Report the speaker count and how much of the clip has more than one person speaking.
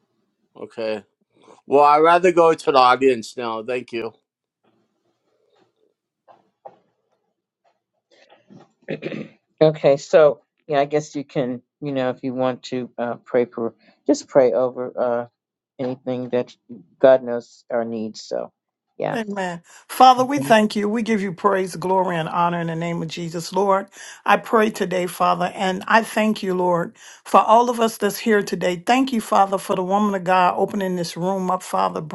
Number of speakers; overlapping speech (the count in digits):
3, about 1%